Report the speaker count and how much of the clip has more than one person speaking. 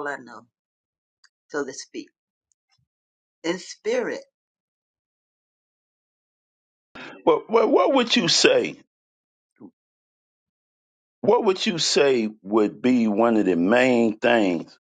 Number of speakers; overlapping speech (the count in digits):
2, no overlap